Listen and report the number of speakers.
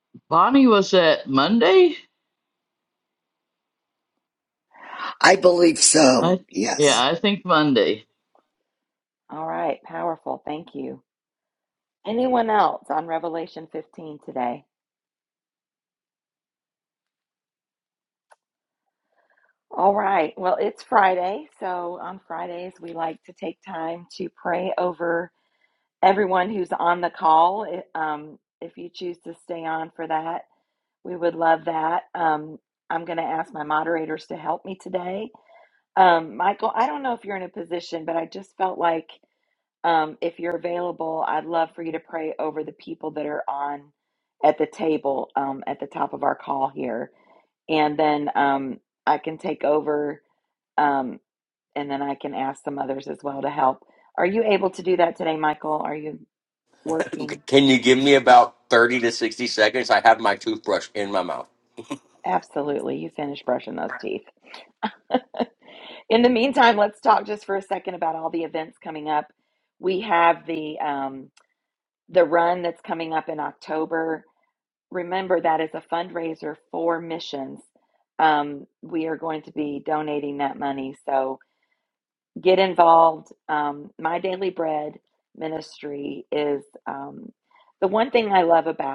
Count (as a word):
four